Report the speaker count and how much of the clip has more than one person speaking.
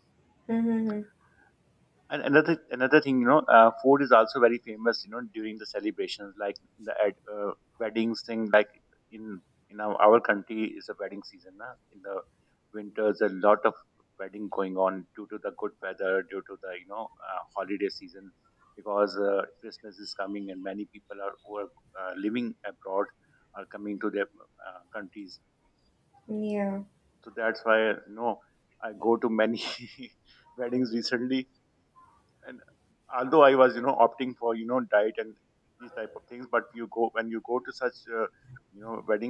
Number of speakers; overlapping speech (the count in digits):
2, no overlap